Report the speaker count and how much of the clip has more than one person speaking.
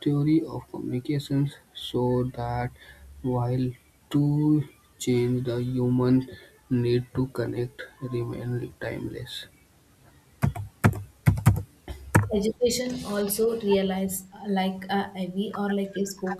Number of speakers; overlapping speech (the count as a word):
two, no overlap